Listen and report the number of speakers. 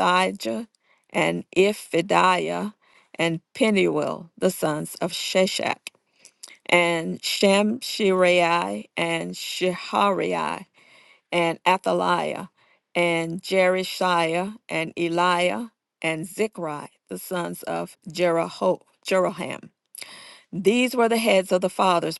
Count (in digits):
1